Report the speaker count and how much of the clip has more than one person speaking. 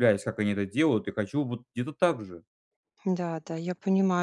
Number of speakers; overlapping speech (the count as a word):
two, no overlap